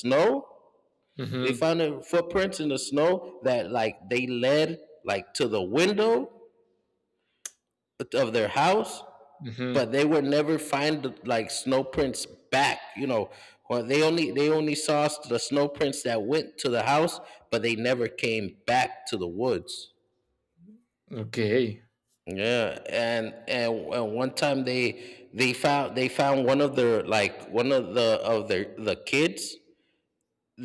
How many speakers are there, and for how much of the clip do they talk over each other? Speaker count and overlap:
2, about 1%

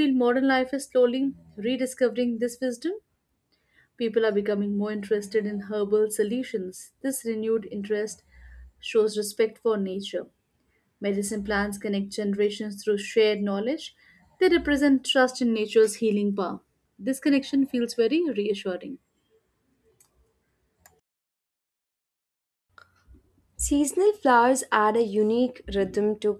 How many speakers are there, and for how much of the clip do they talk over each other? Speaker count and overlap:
2, no overlap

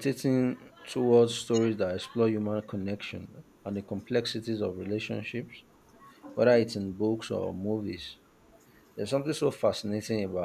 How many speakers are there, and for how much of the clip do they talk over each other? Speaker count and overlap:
1, no overlap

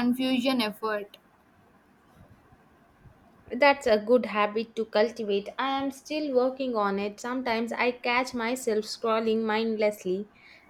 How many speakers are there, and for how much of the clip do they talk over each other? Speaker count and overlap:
2, no overlap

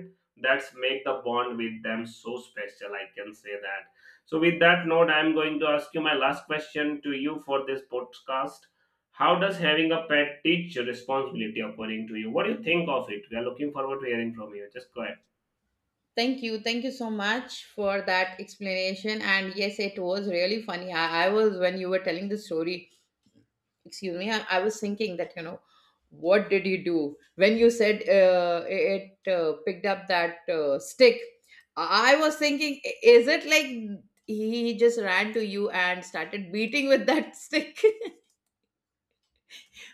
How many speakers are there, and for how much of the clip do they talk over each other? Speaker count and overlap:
2, no overlap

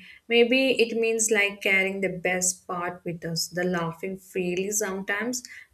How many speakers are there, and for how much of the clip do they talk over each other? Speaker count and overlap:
1, no overlap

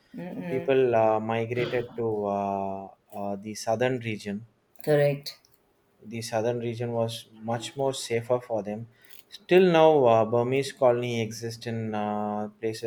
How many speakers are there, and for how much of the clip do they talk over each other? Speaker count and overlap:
2, about 1%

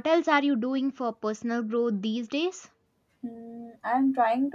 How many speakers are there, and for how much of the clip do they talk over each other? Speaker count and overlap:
2, no overlap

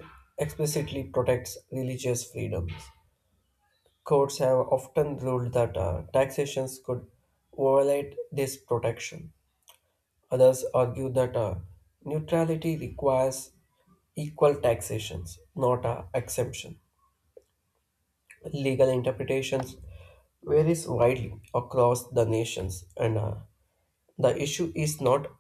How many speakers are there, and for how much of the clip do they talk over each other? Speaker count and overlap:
1, no overlap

